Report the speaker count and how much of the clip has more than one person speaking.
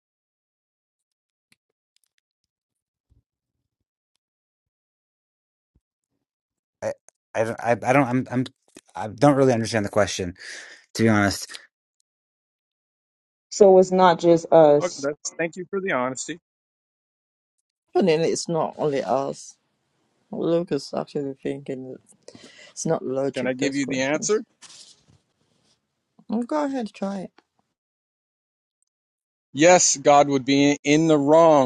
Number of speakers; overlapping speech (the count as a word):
four, about 3%